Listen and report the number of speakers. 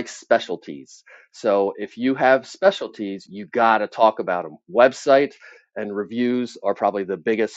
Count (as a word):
one